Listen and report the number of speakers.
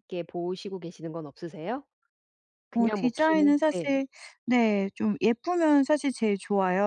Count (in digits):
2